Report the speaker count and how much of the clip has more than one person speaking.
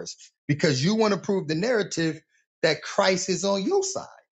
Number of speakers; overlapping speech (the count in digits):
1, no overlap